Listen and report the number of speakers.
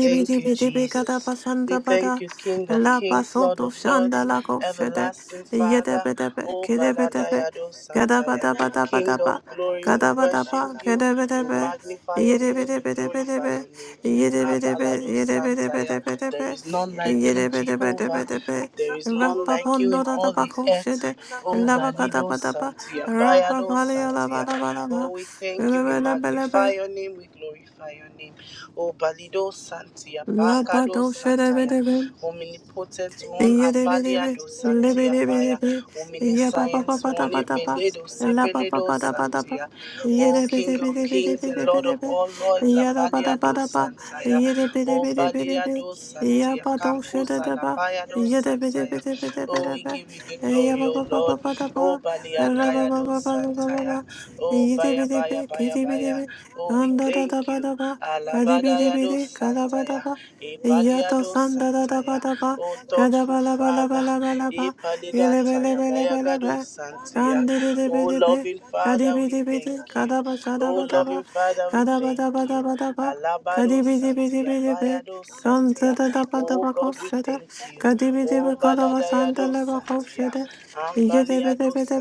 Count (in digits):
2